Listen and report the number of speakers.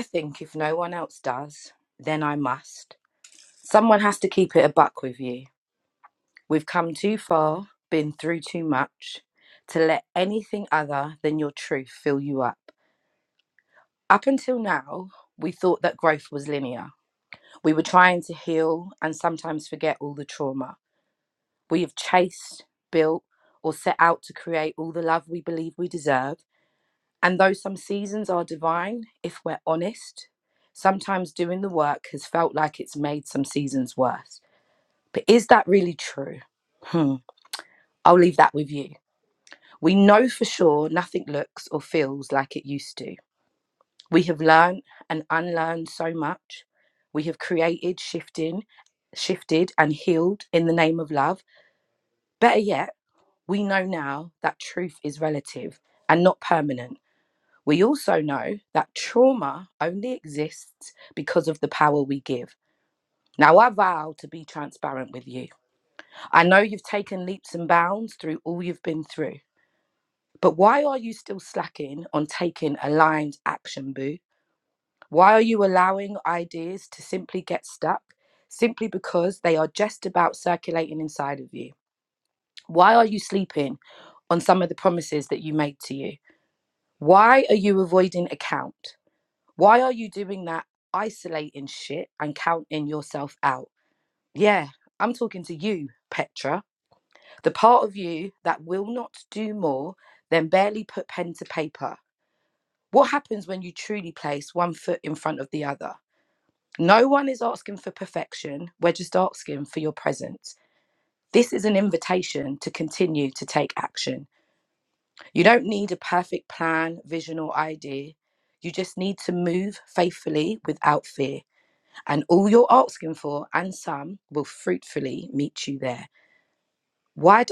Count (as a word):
one